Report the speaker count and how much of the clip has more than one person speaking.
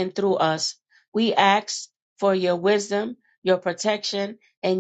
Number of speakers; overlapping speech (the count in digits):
1, no overlap